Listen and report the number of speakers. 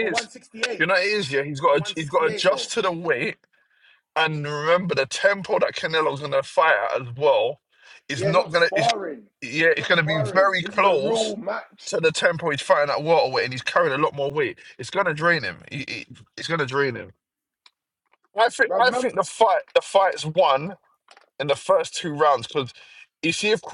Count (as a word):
two